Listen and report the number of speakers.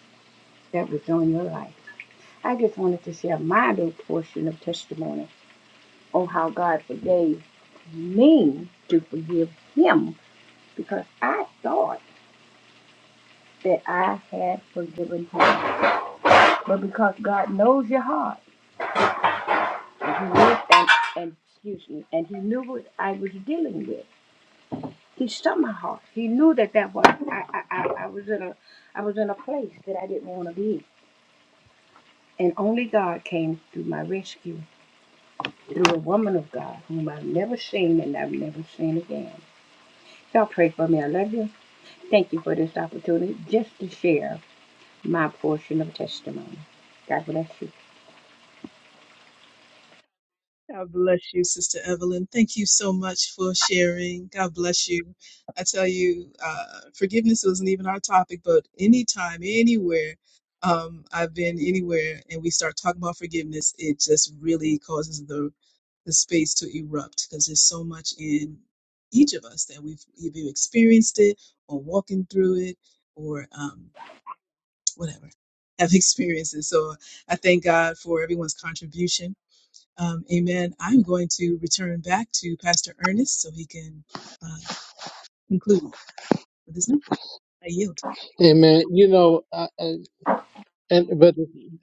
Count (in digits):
3